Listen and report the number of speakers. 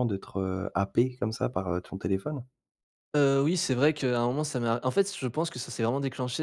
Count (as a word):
two